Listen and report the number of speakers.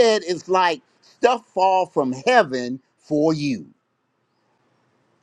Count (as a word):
one